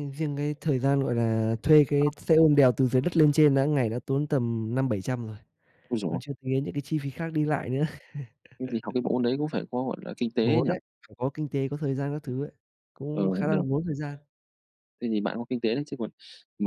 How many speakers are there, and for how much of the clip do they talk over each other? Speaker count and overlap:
two, about 6%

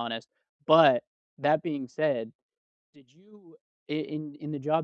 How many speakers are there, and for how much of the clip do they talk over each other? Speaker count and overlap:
one, no overlap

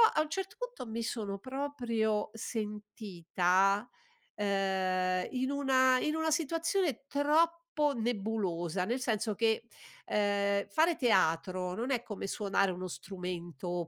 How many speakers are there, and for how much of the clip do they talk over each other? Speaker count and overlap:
one, no overlap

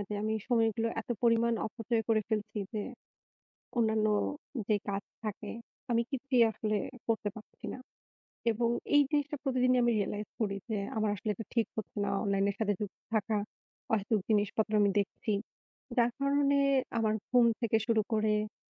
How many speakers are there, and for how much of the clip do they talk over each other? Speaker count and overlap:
one, no overlap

